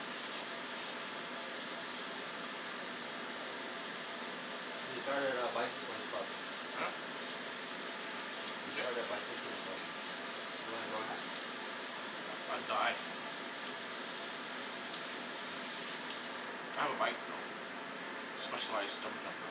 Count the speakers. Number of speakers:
2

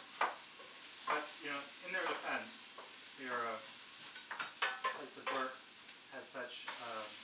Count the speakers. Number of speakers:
1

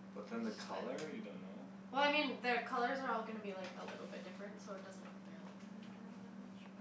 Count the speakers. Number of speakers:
2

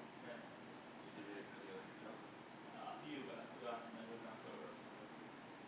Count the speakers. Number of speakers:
2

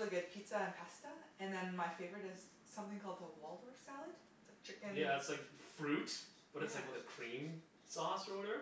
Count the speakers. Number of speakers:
2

